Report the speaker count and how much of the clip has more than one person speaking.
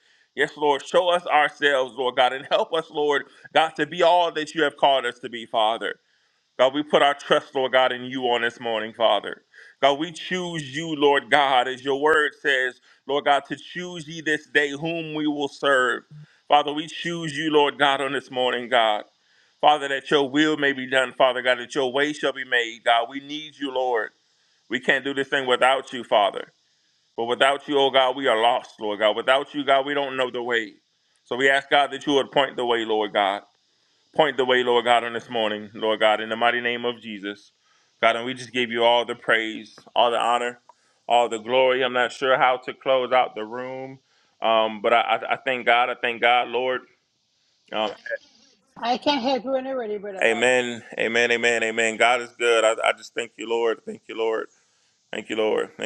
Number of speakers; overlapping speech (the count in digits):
2, under 1%